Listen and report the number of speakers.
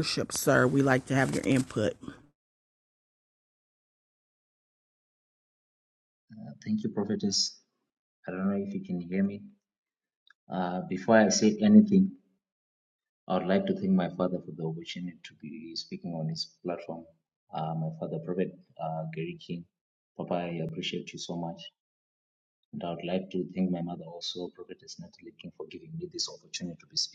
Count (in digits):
2